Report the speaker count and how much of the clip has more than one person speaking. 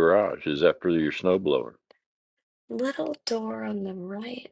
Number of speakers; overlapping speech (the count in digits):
2, no overlap